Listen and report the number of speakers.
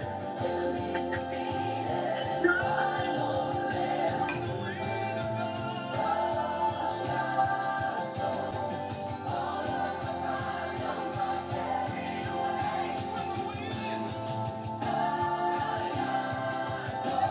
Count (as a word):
zero